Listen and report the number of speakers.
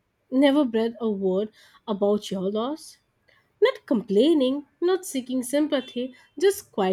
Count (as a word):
one